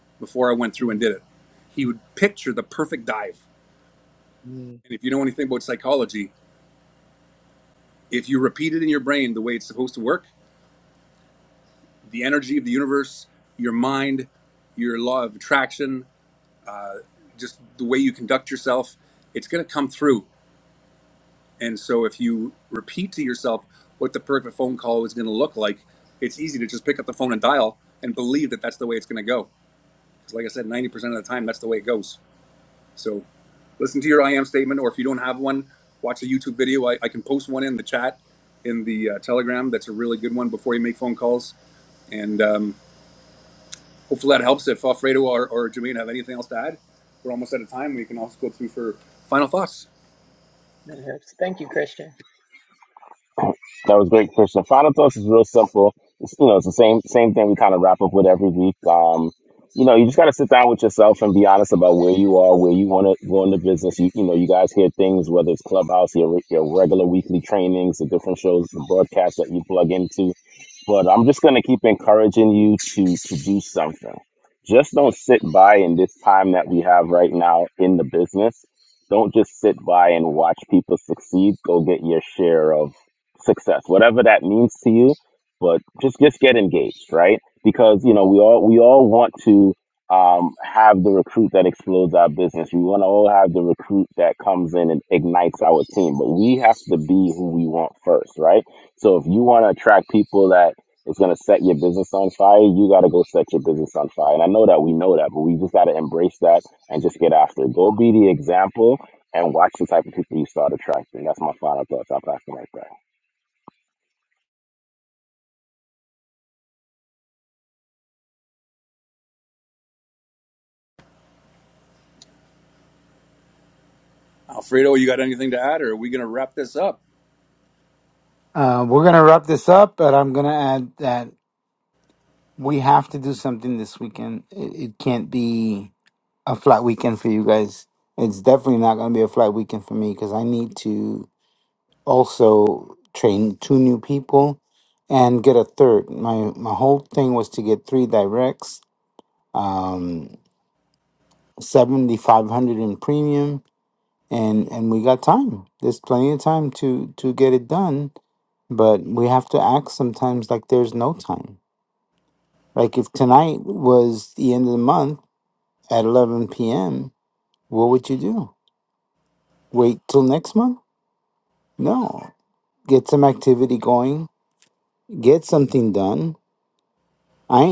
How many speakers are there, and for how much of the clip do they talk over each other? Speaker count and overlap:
four, under 1%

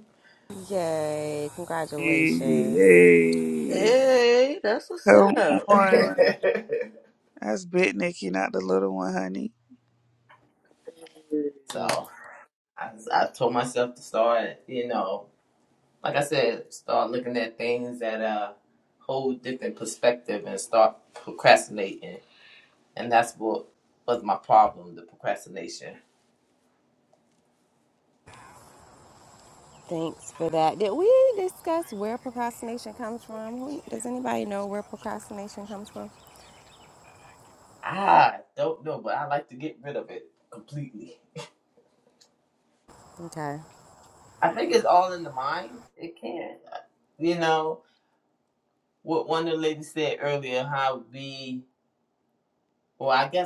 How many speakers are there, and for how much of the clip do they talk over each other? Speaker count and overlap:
four, about 3%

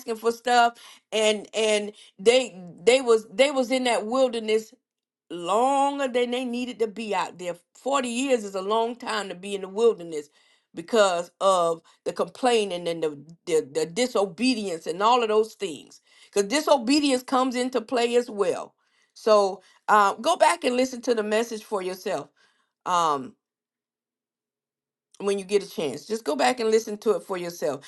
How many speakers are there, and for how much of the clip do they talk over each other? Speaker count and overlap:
one, no overlap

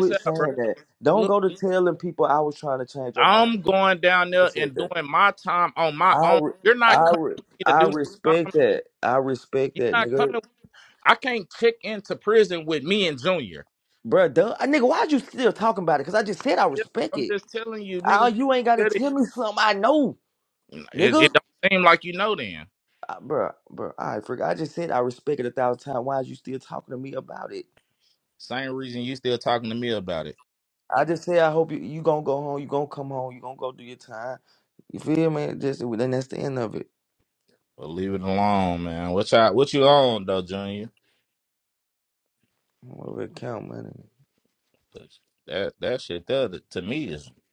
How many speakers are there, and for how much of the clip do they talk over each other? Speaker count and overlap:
two, about 13%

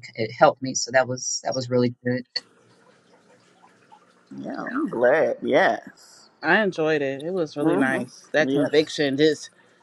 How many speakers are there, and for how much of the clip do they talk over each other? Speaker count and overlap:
three, about 8%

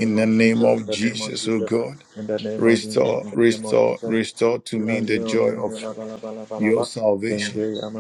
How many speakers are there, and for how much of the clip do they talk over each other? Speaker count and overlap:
two, about 61%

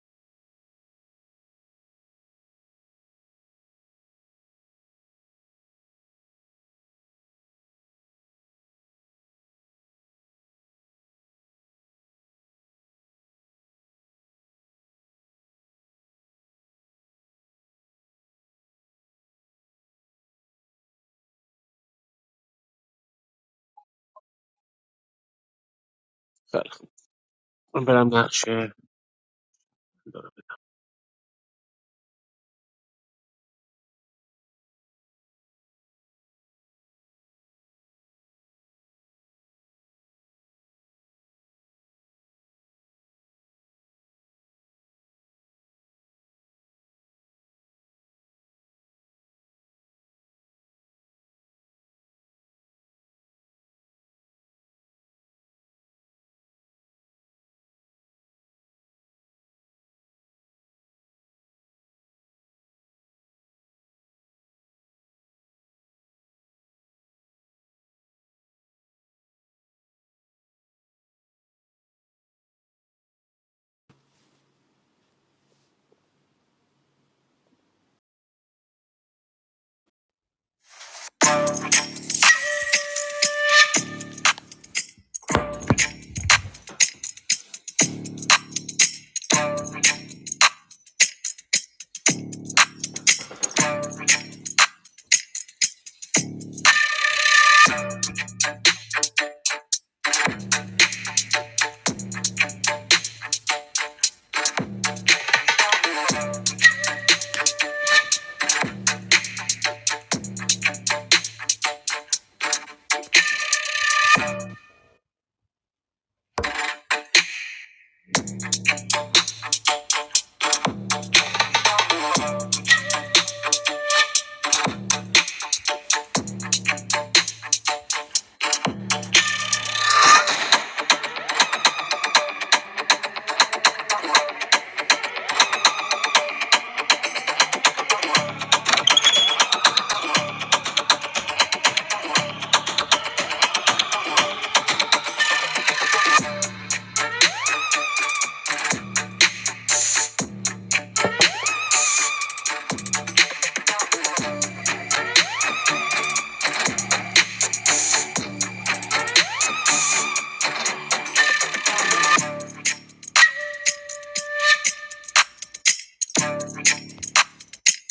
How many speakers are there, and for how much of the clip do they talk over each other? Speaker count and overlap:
one, no overlap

